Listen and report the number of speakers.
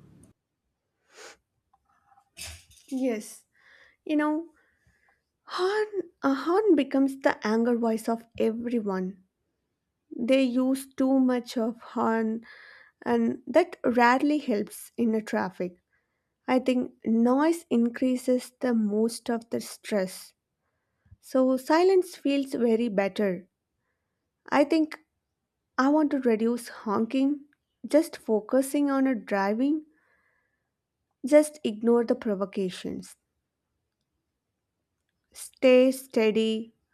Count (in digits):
1